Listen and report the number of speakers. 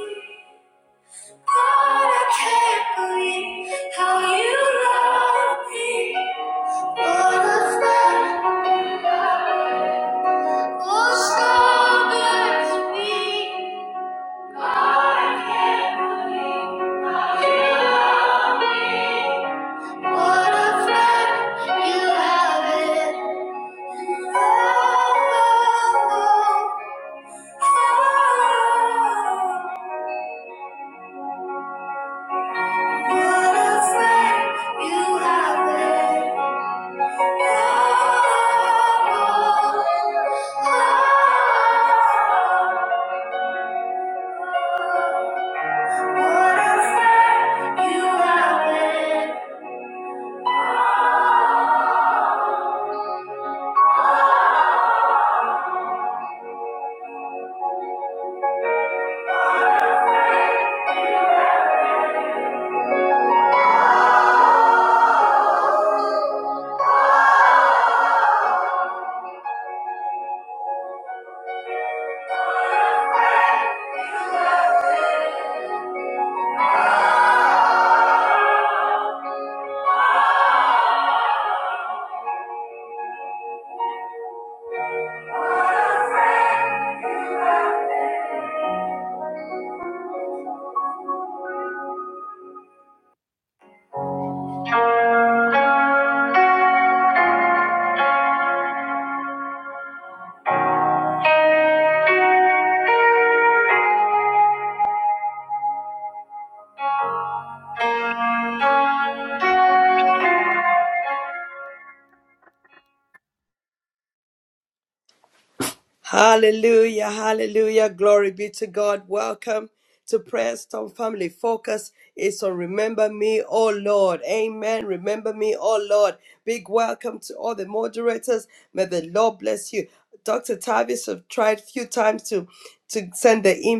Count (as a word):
two